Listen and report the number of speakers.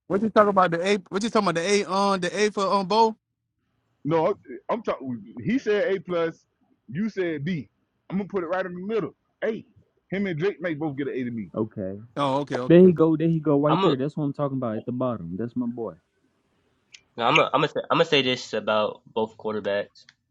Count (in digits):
4